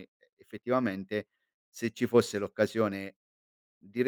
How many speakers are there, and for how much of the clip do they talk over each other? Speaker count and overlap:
one, no overlap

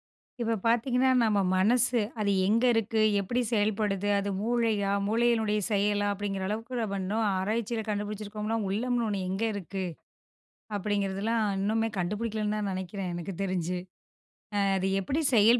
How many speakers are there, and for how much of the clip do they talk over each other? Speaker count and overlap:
one, no overlap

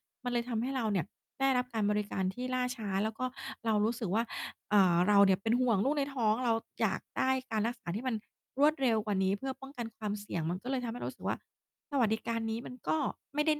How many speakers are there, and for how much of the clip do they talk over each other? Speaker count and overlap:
one, no overlap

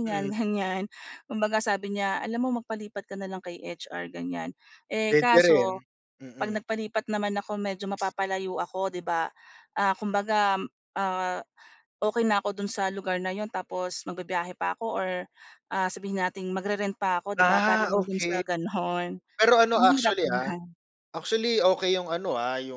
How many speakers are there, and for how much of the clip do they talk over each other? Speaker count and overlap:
two, about 13%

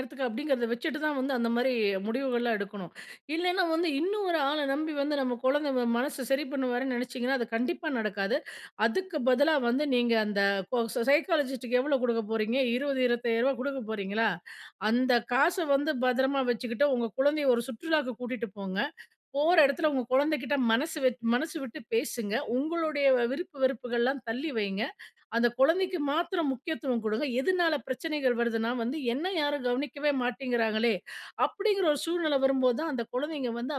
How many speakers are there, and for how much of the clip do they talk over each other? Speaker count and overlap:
one, no overlap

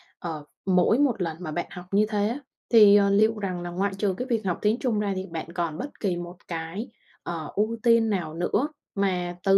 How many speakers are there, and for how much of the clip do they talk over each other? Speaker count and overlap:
one, no overlap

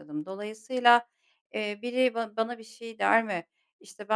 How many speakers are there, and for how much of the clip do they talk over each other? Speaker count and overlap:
one, no overlap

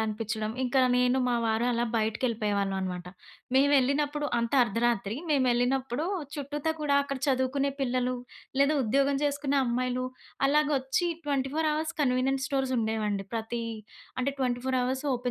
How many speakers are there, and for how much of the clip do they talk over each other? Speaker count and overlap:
one, no overlap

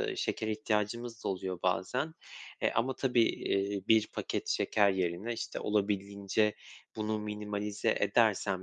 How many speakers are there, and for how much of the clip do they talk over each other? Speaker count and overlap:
one, no overlap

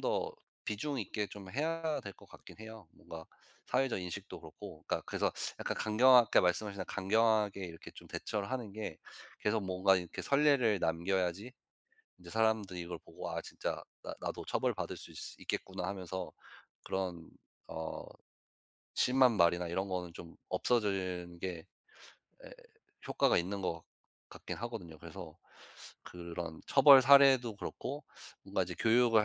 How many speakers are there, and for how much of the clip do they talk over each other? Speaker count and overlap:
one, no overlap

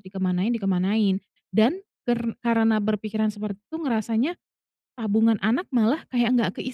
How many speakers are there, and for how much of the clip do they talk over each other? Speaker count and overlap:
one, no overlap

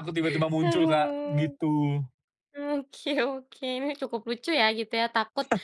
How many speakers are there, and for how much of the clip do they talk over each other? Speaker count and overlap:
two, about 17%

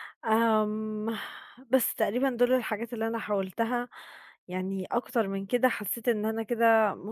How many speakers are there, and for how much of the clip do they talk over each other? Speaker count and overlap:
one, no overlap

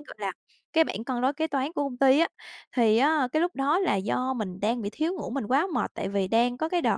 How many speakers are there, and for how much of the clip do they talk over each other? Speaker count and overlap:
one, no overlap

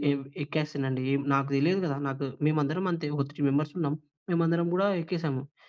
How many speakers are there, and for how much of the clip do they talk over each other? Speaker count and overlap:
one, no overlap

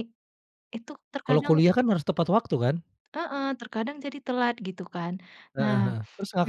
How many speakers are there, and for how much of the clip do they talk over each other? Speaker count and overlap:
two, about 10%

